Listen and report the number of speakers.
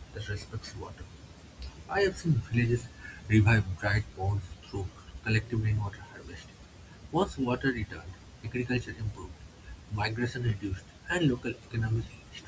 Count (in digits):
1